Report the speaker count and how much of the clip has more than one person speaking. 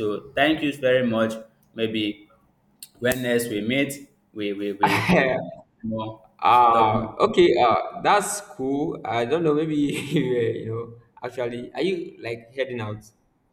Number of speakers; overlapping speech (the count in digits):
2, about 5%